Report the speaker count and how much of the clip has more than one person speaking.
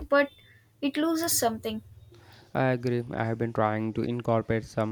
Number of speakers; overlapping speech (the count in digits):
2, no overlap